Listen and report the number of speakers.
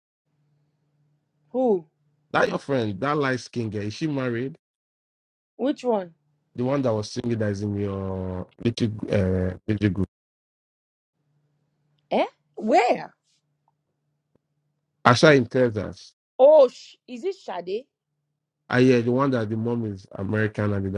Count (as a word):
two